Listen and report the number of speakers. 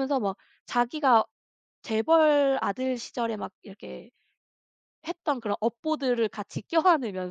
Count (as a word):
one